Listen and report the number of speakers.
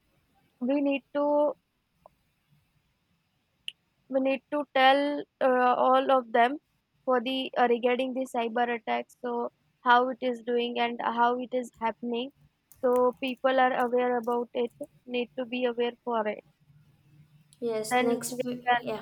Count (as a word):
two